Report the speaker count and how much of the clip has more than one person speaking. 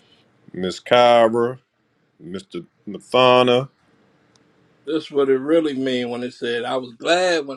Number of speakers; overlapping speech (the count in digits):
2, no overlap